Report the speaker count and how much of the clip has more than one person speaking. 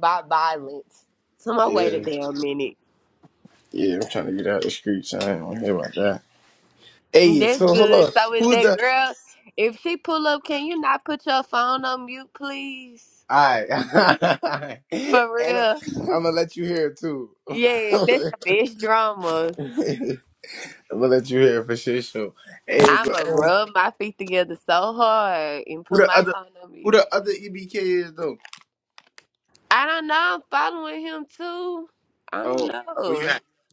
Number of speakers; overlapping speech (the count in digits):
2, about 13%